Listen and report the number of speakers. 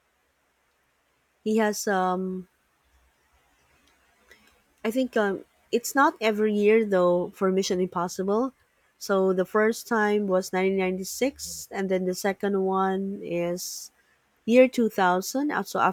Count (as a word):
one